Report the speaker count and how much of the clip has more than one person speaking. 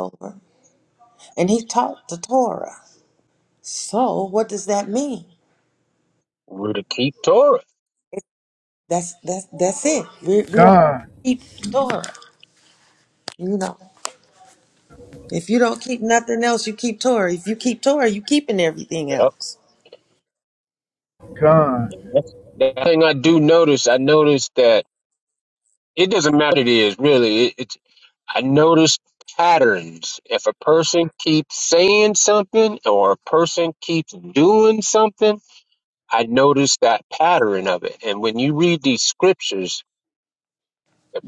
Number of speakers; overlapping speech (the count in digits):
3, about 1%